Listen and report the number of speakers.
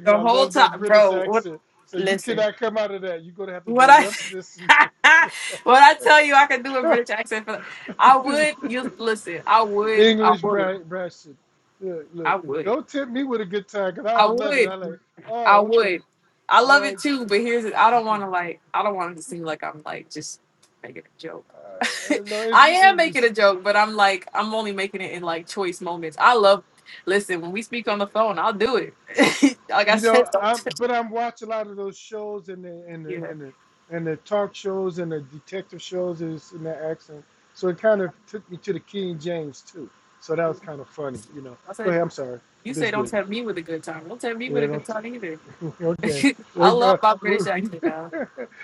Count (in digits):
2